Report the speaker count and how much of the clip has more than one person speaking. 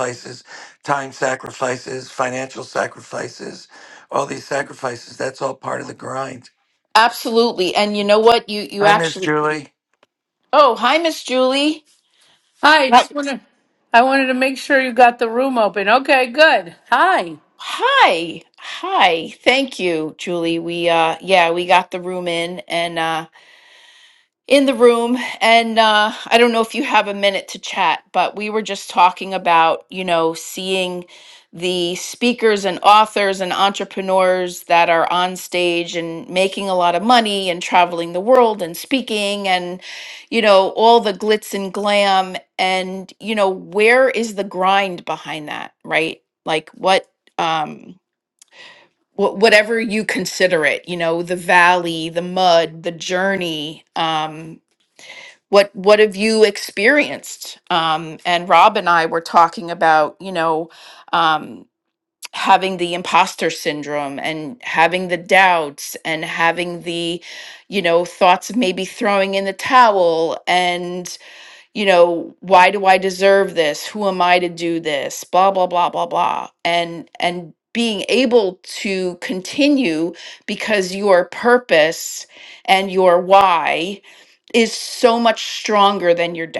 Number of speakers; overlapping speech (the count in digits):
3, about 1%